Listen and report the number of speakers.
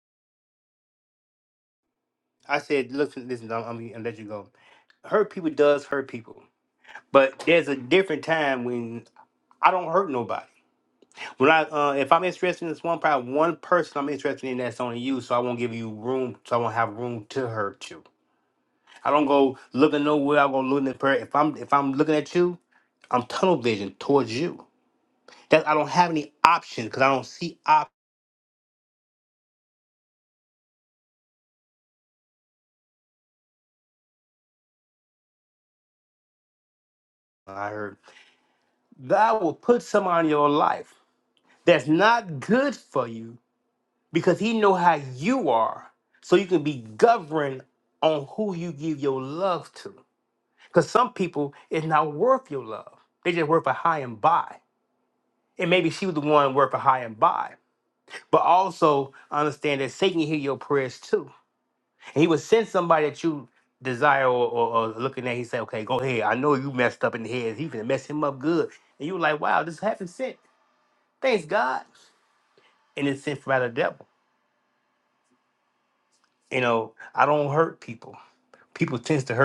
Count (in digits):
1